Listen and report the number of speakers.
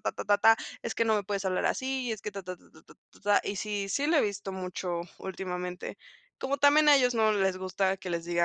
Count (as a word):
one